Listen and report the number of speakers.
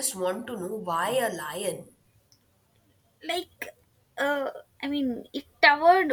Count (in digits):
2